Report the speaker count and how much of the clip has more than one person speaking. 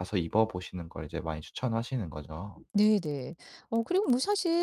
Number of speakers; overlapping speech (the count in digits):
2, no overlap